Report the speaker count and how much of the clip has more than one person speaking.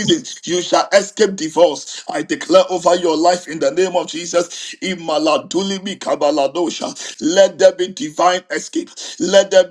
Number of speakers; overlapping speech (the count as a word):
one, no overlap